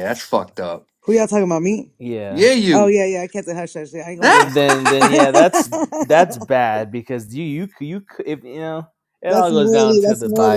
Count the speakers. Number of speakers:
3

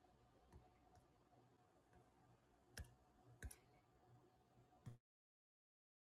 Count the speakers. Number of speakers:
0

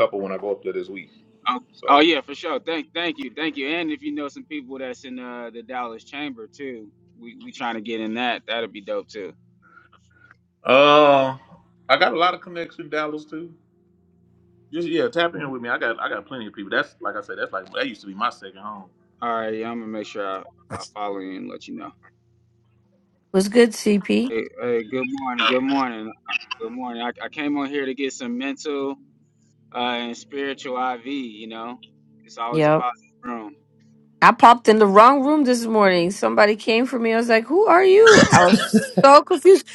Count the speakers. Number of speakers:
3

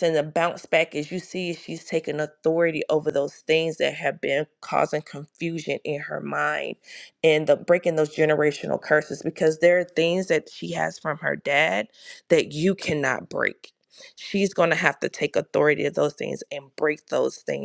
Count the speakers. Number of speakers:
1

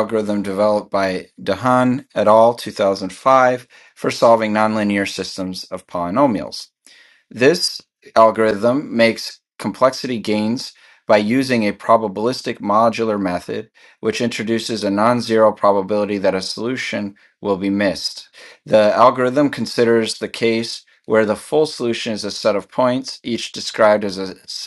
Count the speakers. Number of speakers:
1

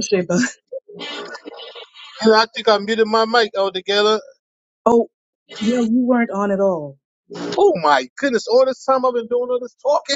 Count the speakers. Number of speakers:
2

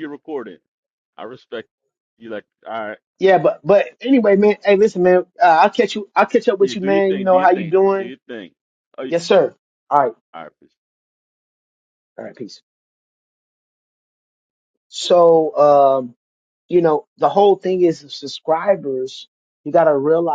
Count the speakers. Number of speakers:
2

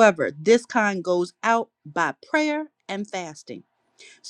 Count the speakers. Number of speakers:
1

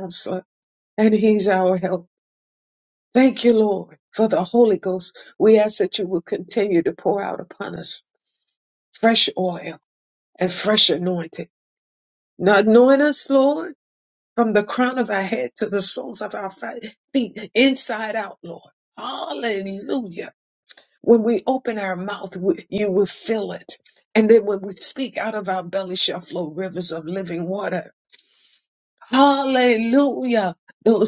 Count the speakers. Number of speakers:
1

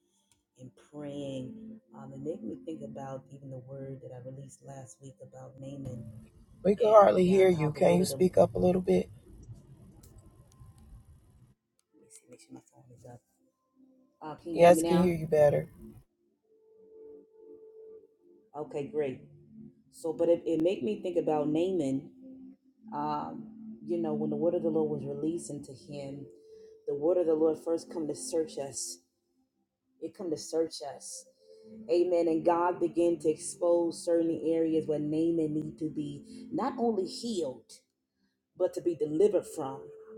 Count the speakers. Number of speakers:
2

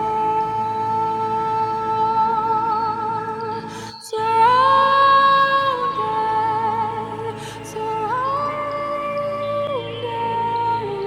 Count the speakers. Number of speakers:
1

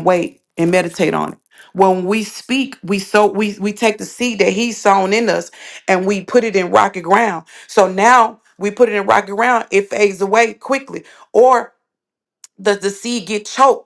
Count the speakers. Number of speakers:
1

